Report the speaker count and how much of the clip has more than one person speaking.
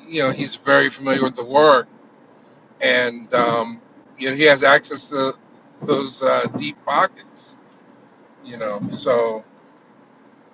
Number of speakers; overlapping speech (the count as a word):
one, no overlap